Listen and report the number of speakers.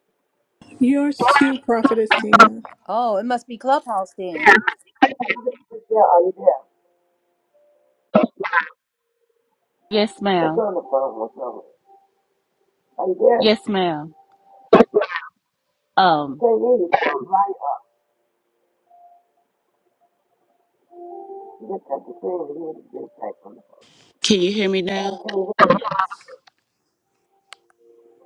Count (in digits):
4